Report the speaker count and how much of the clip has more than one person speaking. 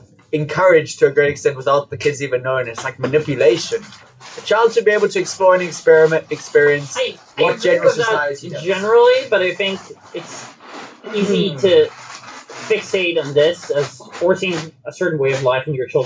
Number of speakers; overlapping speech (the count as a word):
two, about 8%